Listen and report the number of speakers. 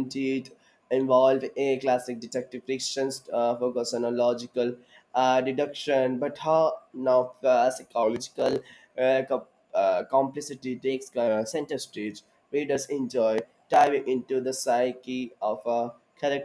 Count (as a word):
one